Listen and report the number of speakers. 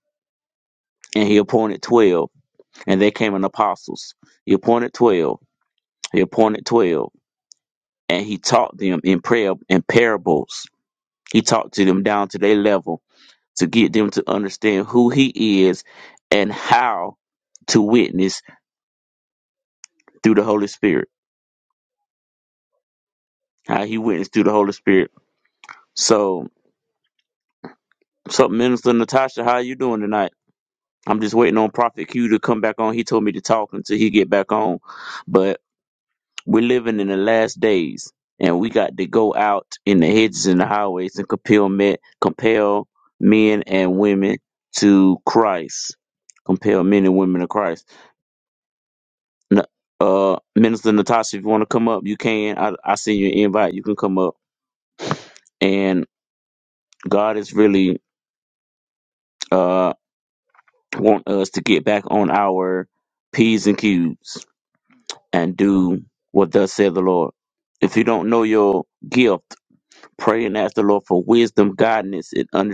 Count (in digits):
1